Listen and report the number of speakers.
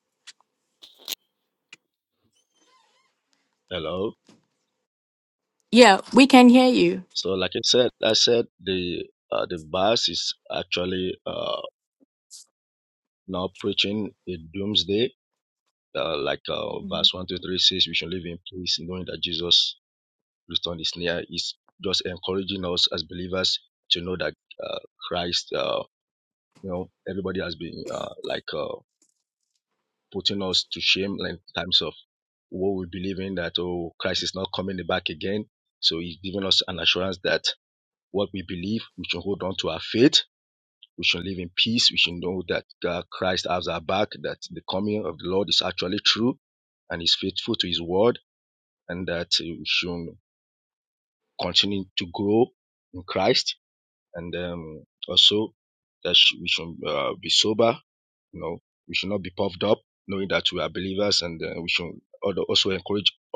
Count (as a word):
two